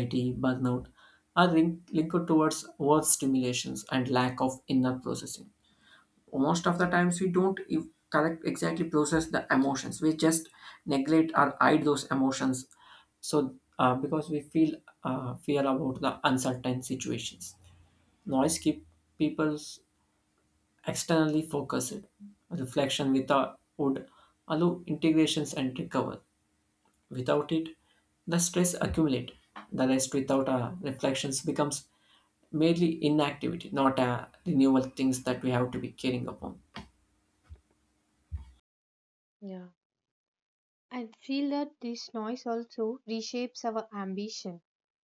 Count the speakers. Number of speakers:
2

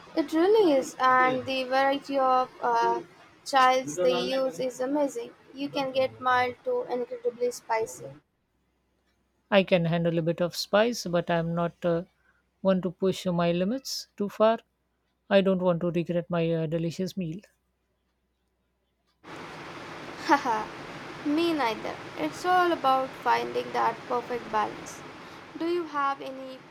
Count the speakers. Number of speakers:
2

